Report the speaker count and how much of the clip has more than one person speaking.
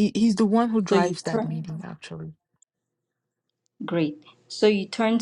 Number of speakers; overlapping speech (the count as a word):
two, about 15%